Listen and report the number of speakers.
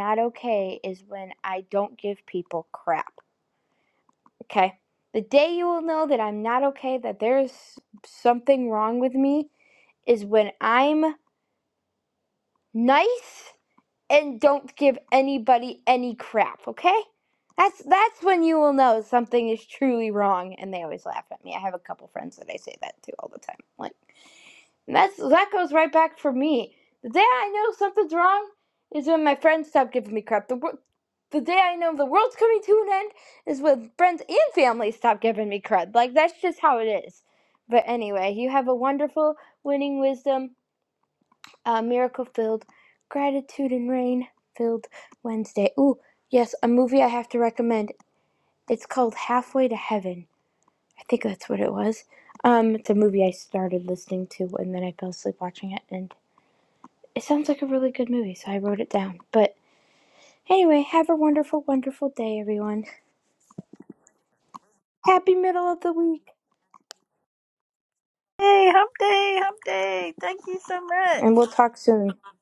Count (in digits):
2